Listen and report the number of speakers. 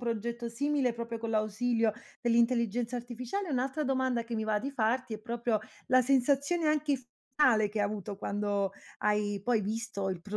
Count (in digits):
1